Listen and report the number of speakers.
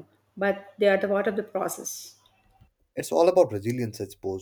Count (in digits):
2